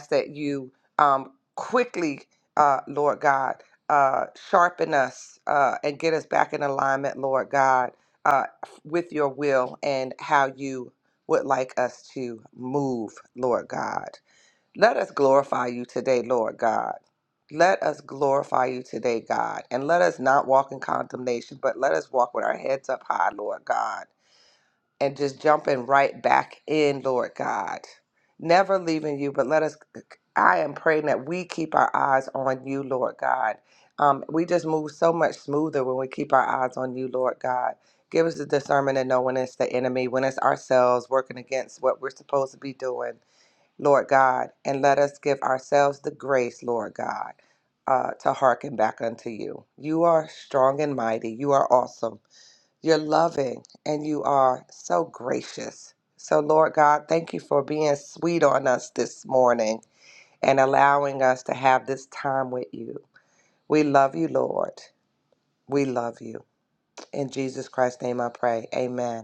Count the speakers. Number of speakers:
1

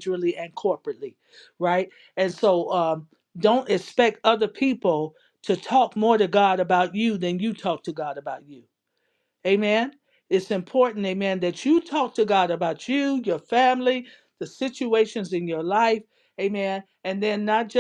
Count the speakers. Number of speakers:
1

